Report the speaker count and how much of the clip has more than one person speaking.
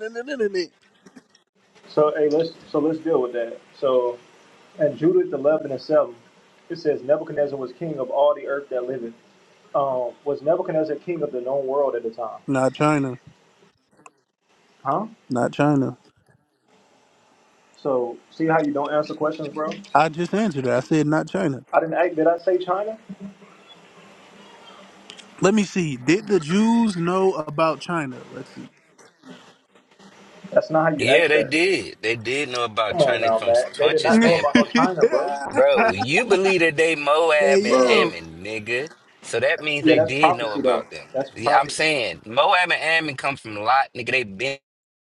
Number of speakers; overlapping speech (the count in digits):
3, about 11%